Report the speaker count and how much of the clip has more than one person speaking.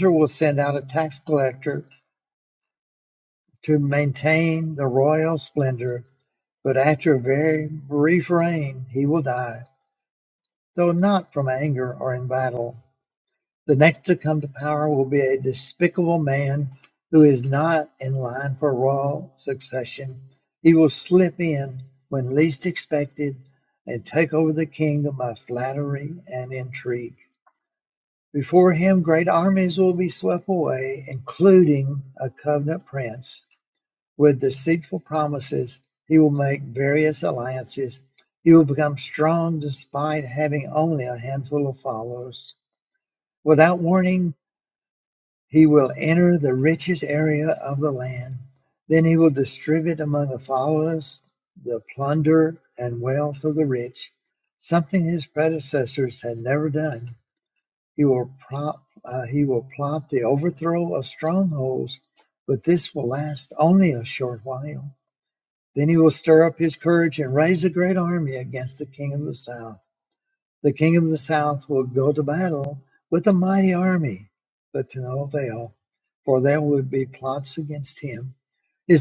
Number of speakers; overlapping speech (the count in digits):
1, no overlap